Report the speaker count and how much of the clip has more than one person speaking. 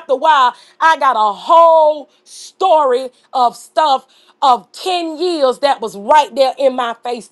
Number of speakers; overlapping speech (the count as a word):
one, no overlap